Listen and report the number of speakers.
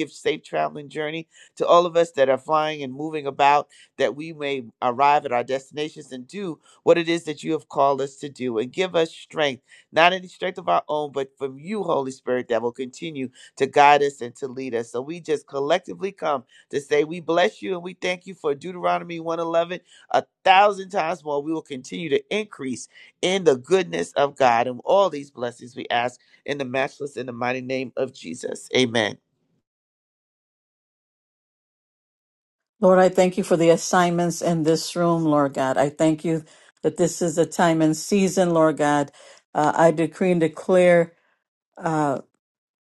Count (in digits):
2